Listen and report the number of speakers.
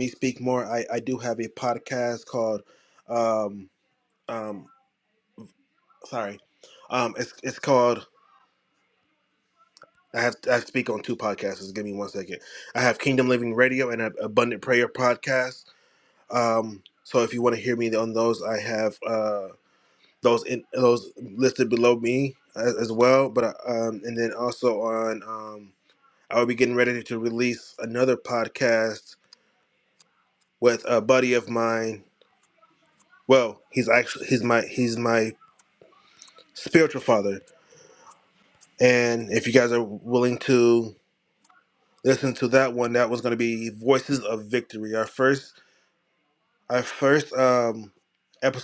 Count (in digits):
1